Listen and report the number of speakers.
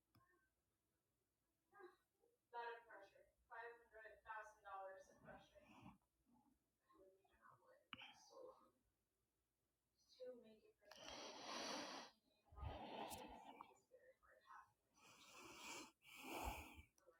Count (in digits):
0